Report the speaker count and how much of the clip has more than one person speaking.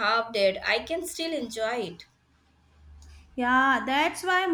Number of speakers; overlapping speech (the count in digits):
2, no overlap